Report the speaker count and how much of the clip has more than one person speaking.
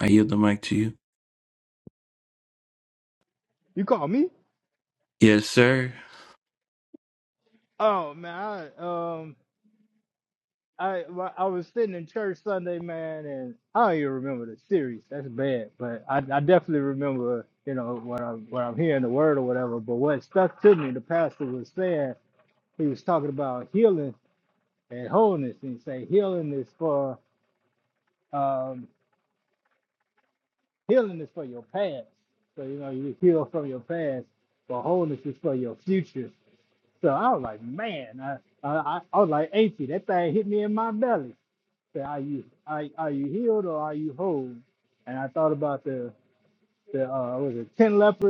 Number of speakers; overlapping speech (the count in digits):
2, no overlap